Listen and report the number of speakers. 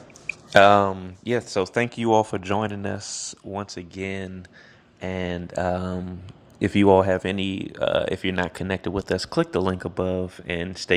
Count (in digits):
1